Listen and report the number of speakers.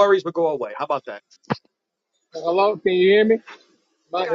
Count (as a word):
two